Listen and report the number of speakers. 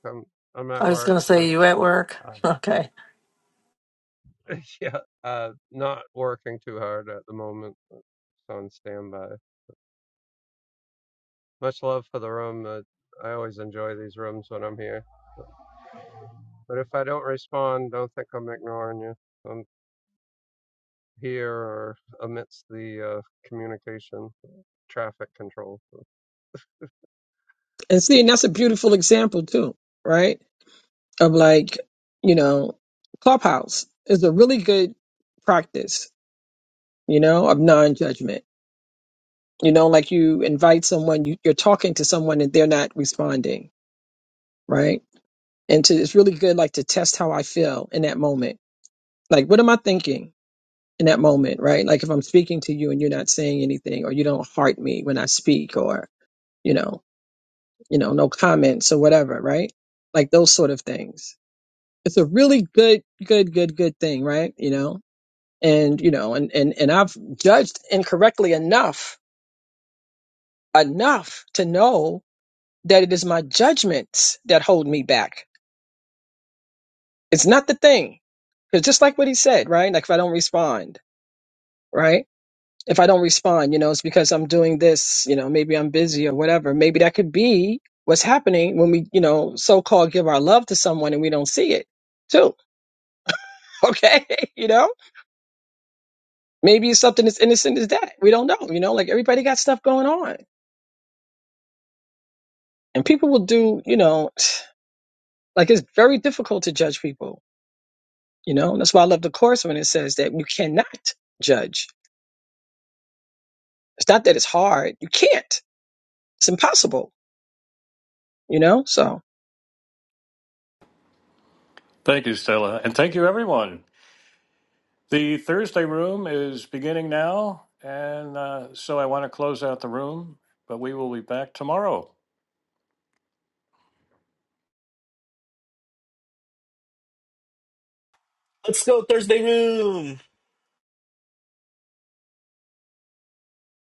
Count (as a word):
five